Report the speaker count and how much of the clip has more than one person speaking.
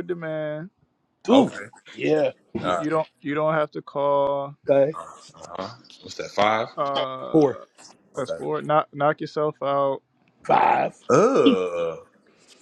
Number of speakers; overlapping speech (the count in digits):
3, about 8%